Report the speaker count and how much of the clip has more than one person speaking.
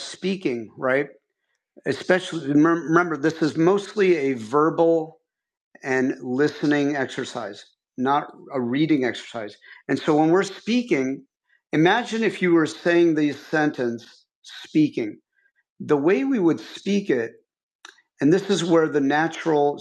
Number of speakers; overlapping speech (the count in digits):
1, no overlap